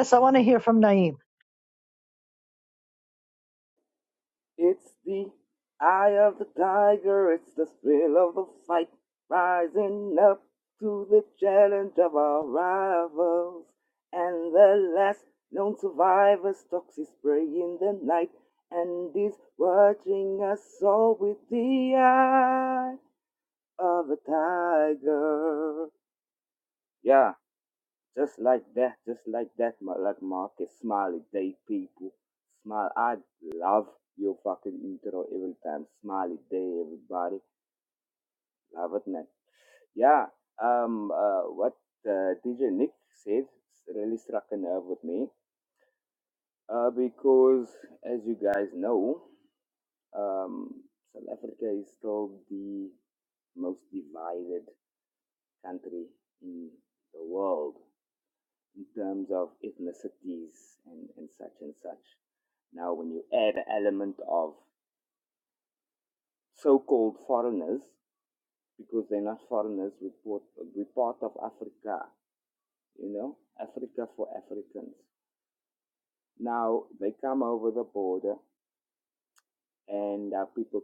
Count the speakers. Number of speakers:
2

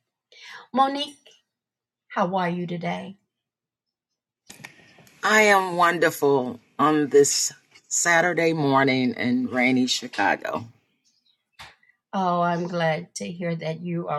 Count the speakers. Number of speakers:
2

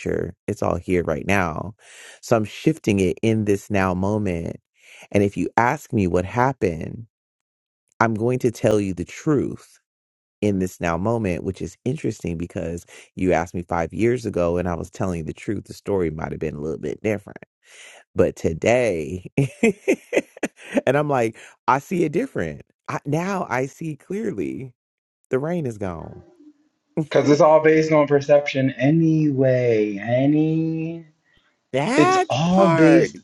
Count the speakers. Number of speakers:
2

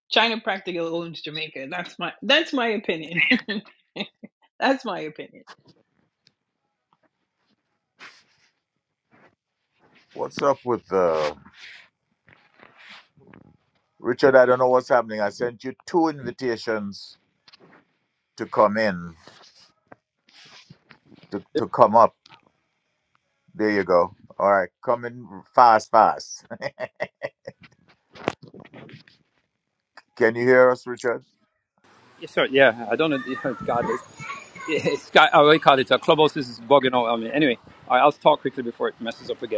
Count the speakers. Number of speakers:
3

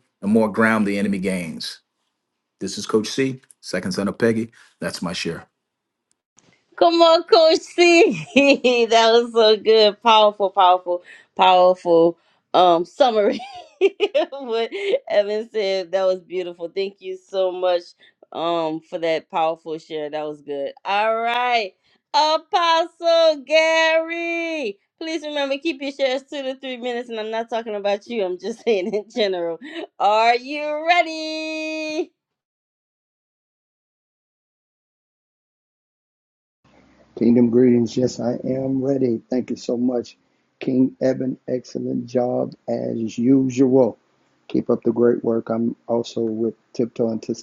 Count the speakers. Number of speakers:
3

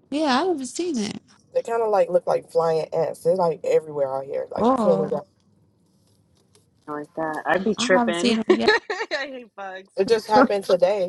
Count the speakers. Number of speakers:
3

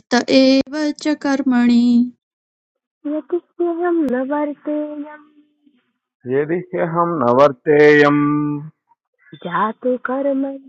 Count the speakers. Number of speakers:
3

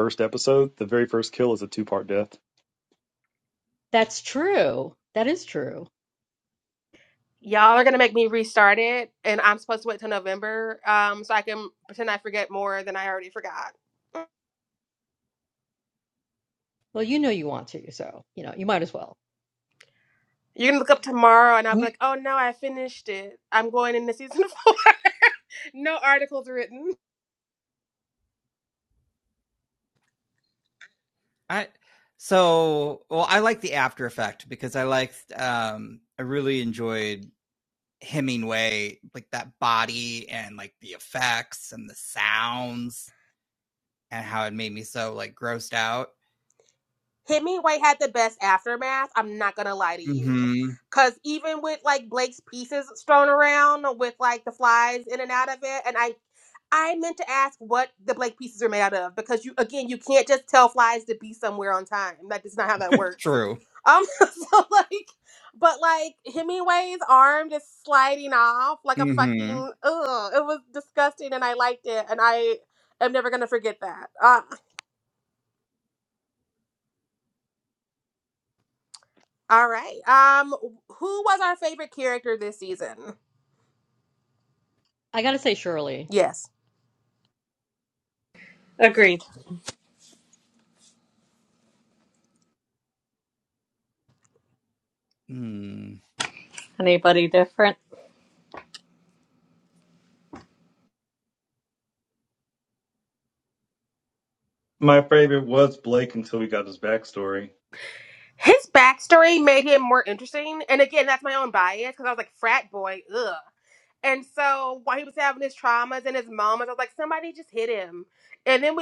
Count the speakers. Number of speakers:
5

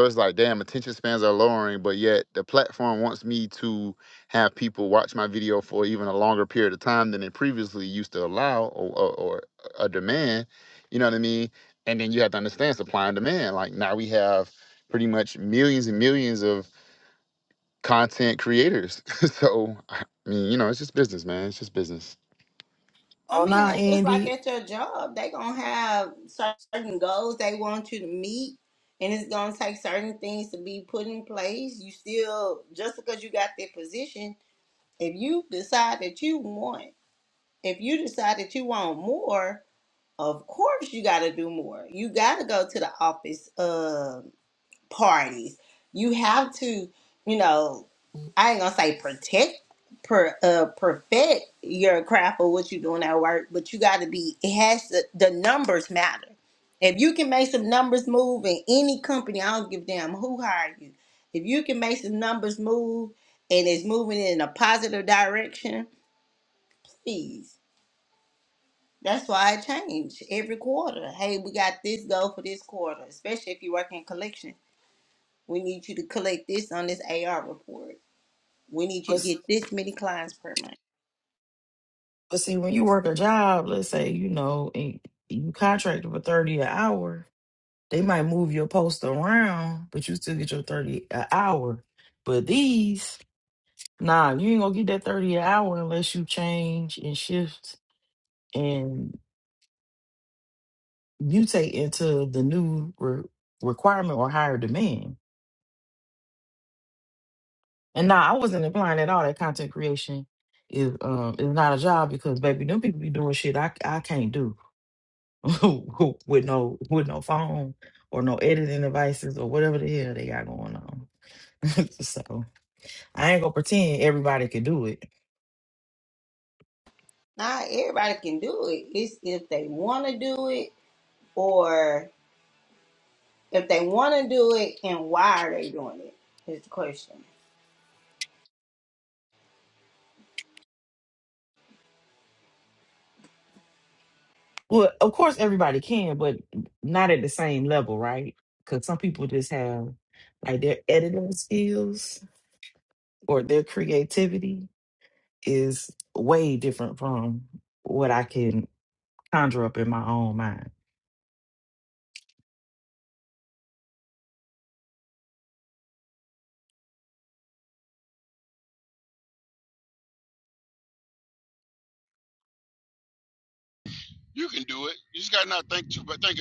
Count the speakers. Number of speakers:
4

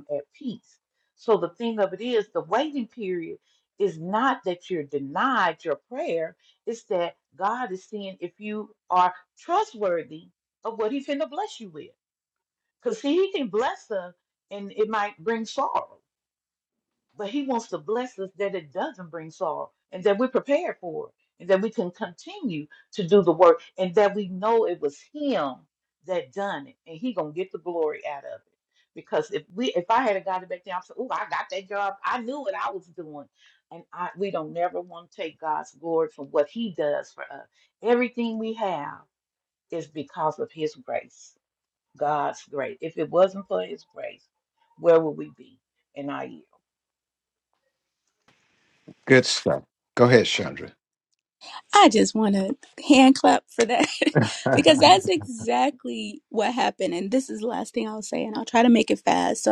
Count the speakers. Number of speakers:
3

